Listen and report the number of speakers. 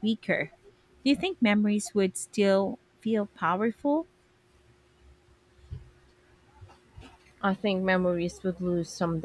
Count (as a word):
two